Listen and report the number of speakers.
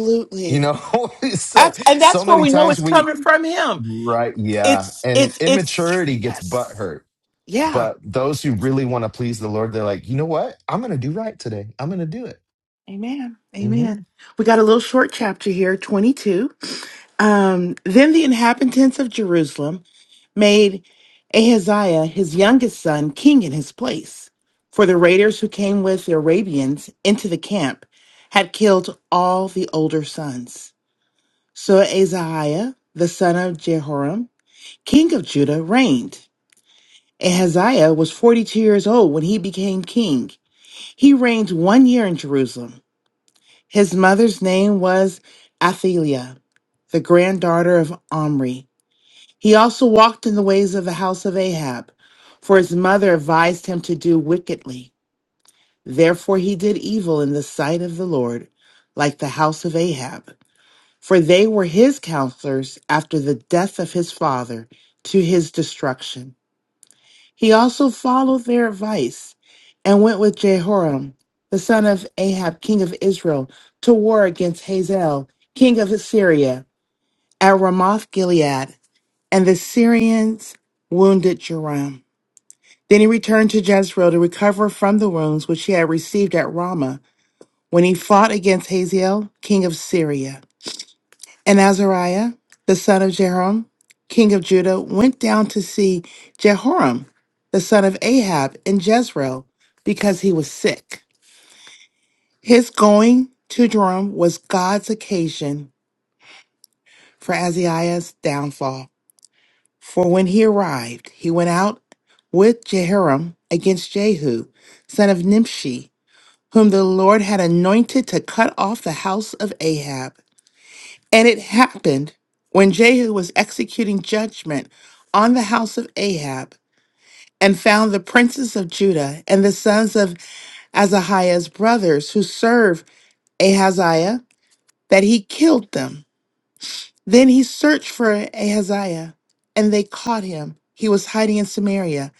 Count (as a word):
two